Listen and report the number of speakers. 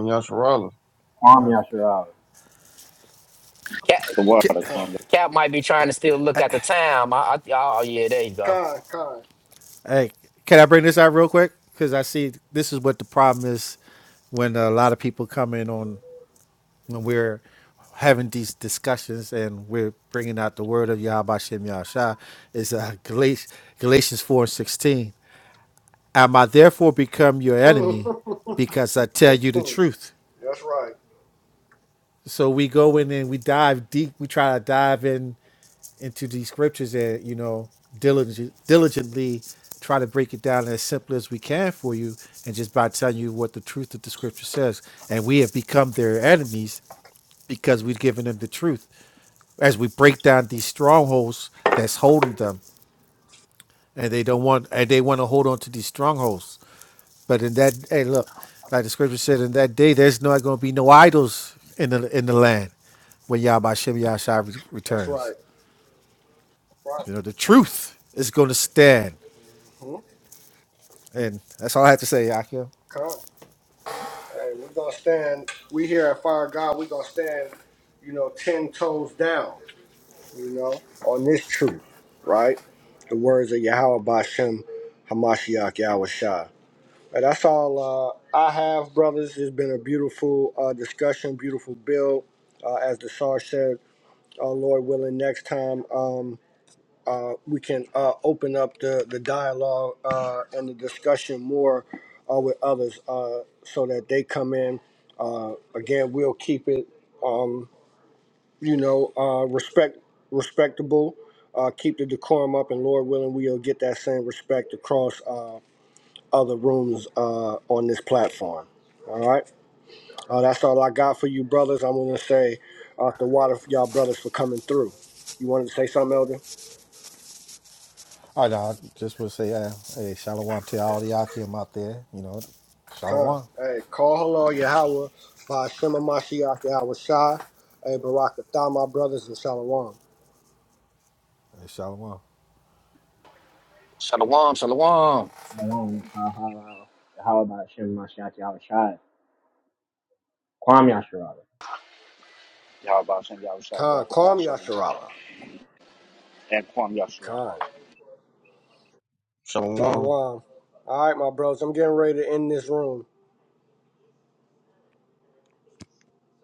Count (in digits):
6